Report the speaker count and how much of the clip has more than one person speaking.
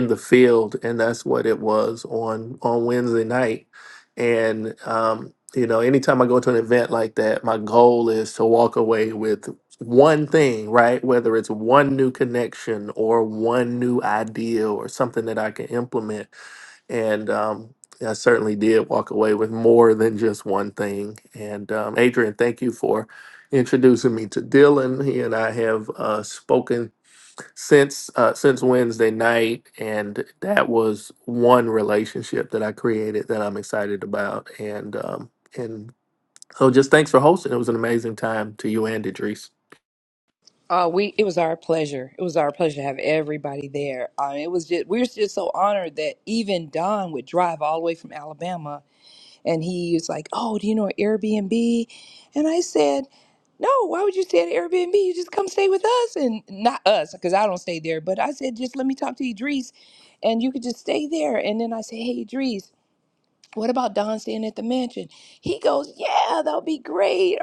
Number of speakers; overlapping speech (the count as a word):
two, no overlap